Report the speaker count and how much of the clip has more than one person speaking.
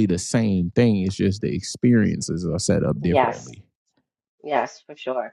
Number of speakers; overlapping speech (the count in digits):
2, about 11%